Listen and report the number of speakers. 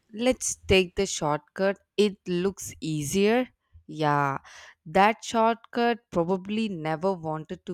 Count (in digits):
1